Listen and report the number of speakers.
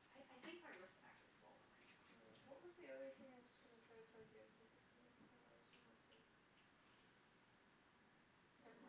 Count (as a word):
two